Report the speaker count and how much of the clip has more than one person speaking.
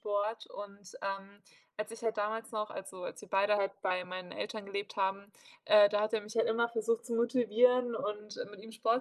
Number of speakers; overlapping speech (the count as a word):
one, no overlap